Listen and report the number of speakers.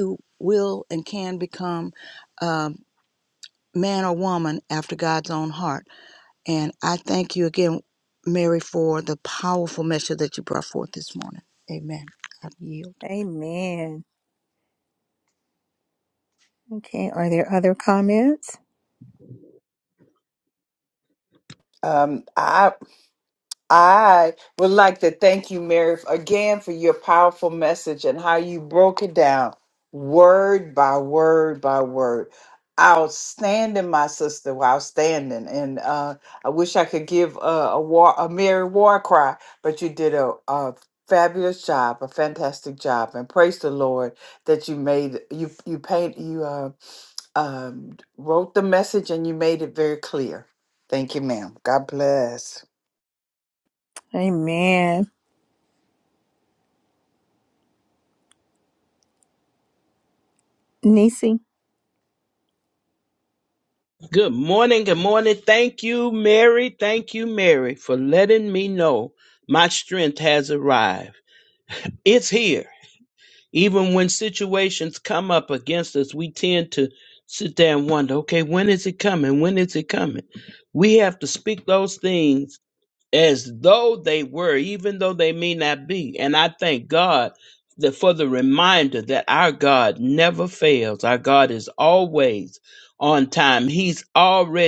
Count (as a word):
four